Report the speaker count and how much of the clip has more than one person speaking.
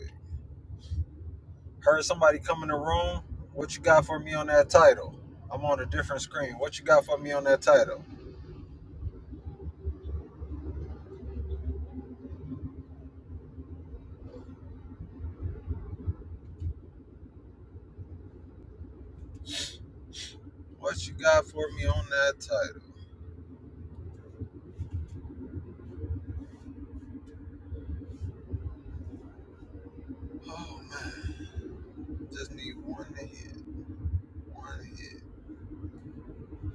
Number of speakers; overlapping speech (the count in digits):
1, no overlap